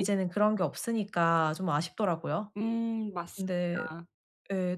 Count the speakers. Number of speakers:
2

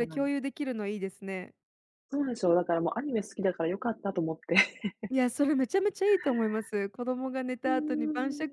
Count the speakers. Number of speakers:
2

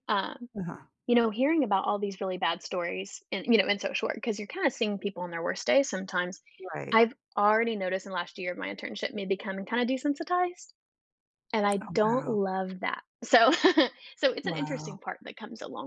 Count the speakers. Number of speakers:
2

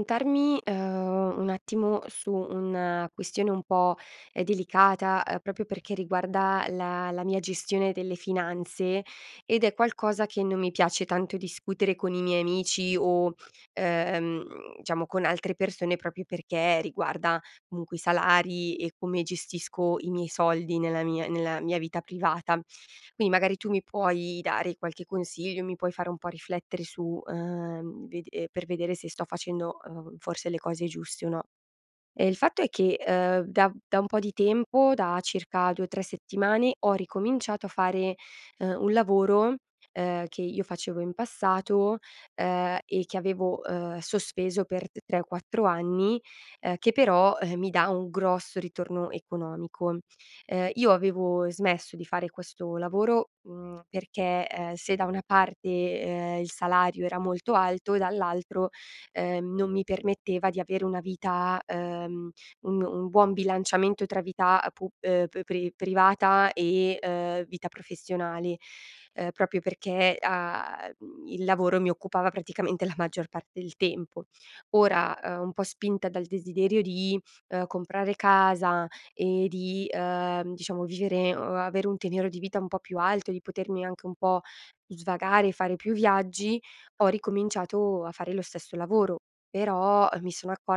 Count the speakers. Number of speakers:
1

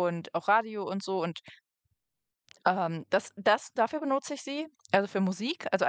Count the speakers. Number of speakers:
1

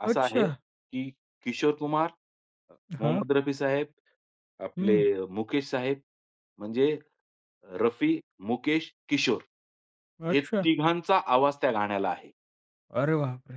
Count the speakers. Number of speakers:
2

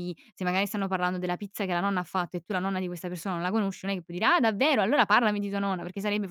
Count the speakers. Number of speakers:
1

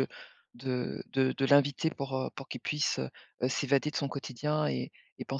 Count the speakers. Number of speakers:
1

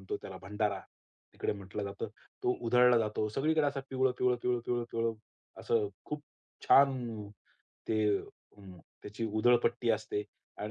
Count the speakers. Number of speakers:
1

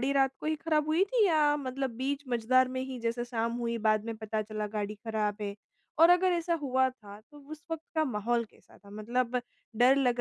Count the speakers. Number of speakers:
1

